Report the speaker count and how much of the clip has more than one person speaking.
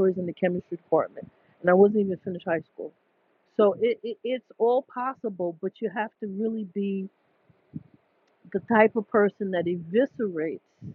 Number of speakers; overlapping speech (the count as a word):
one, no overlap